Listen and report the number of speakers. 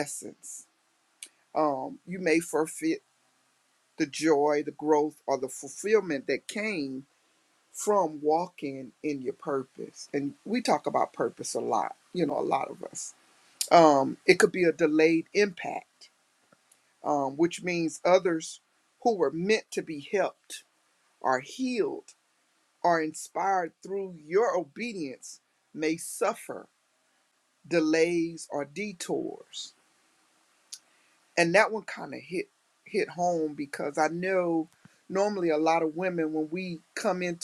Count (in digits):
1